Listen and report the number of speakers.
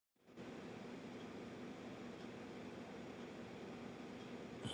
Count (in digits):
0